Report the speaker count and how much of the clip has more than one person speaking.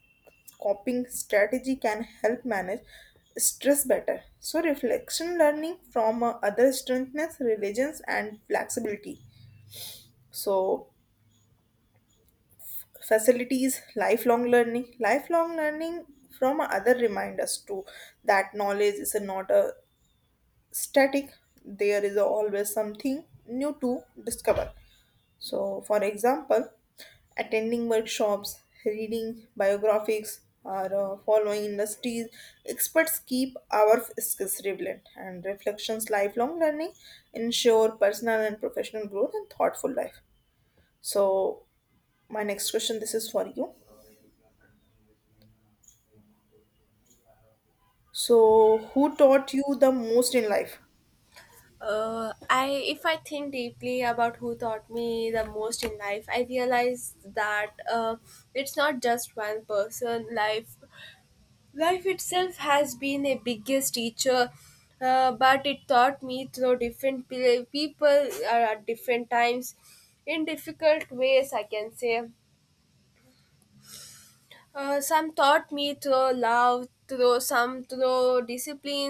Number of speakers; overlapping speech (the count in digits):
2, no overlap